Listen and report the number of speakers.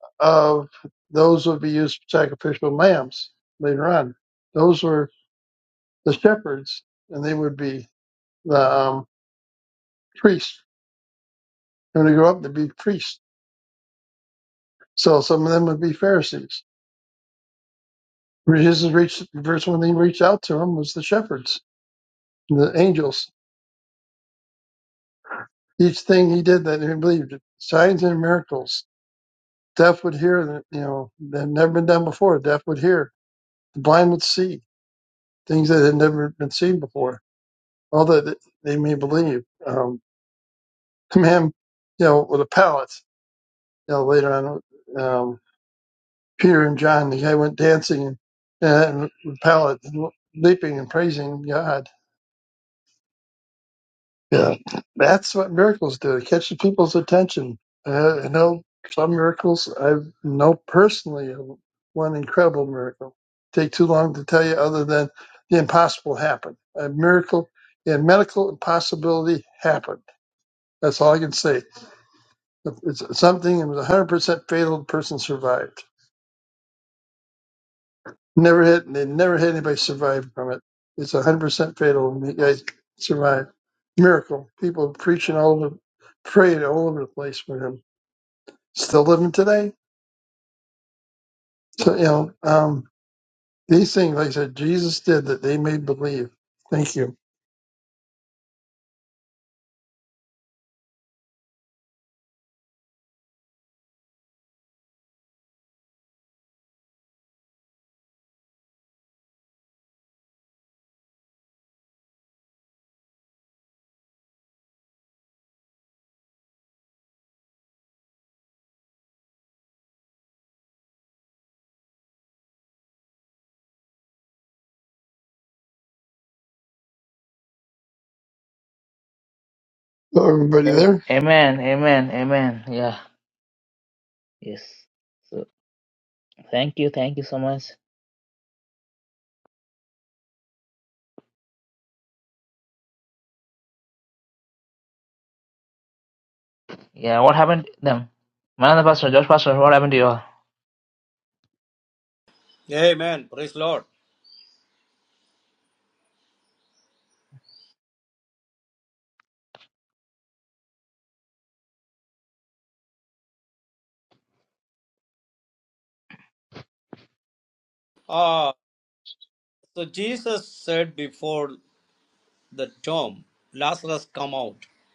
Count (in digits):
3